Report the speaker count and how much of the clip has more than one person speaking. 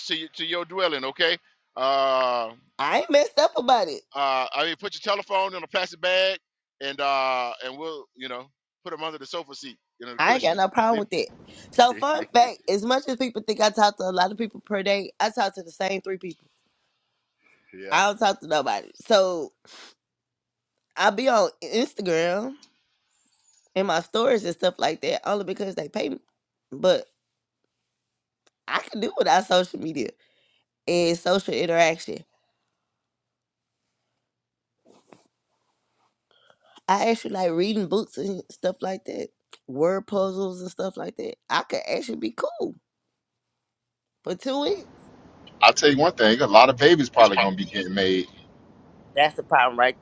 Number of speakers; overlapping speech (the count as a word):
three, about 1%